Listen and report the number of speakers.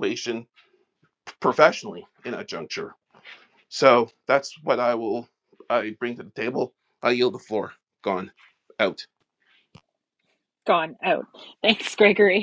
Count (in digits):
2